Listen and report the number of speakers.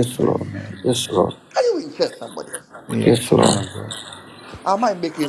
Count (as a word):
three